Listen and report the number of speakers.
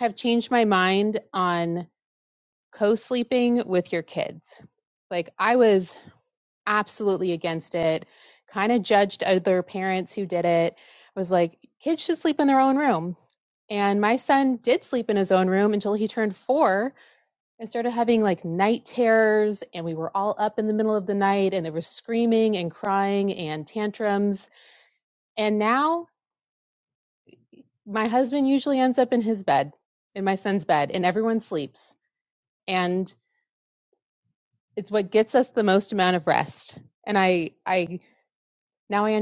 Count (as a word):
one